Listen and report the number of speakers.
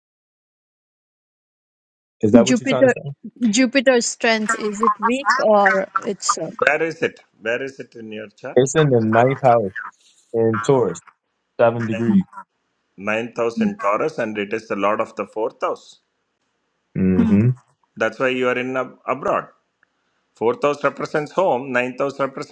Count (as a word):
three